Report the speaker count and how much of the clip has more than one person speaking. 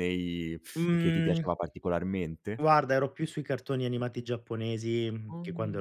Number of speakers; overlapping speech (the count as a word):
two, about 17%